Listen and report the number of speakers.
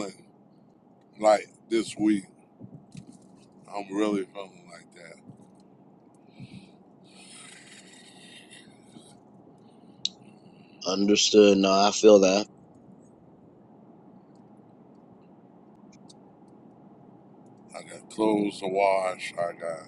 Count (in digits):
2